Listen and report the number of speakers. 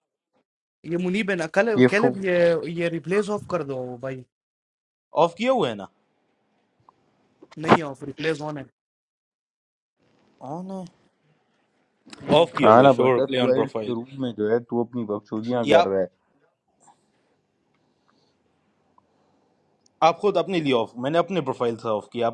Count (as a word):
three